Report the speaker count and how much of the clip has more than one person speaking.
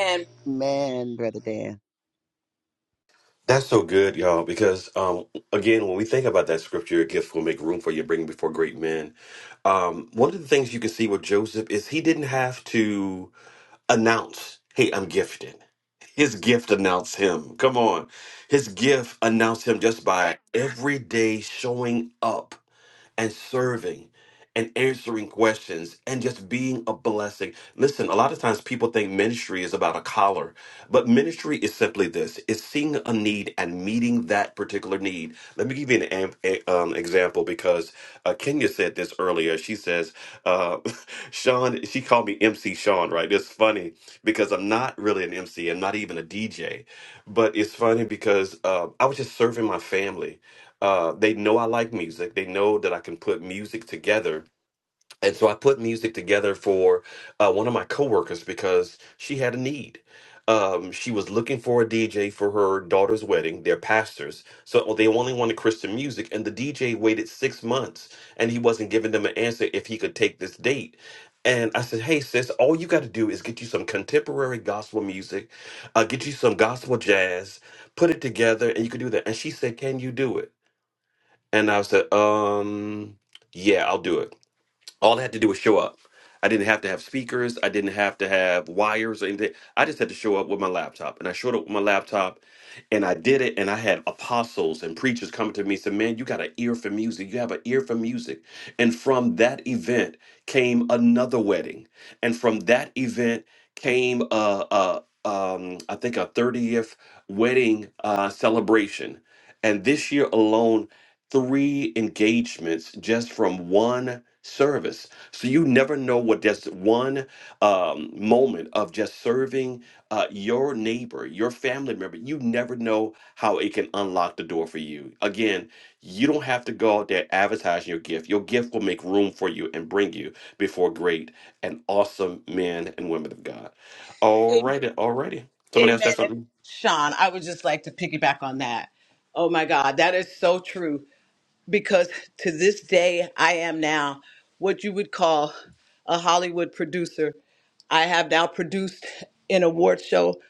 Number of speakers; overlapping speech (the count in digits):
3, under 1%